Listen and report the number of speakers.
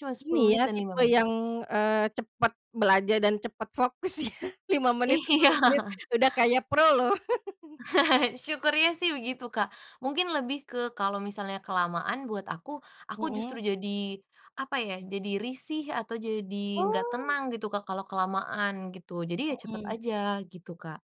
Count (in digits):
2